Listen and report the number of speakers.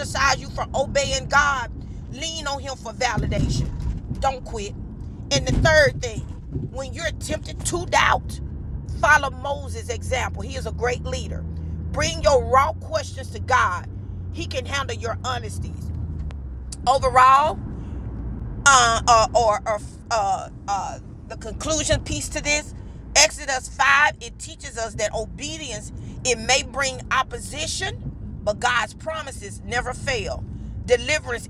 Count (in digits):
1